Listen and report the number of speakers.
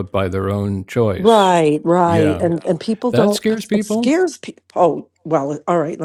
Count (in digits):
2